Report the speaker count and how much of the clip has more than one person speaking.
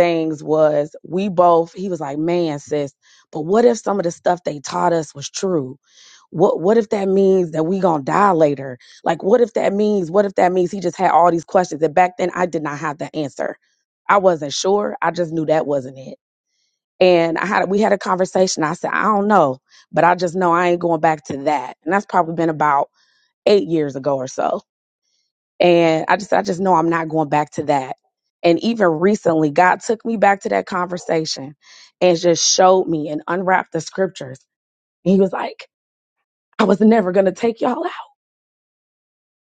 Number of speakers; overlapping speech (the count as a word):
one, no overlap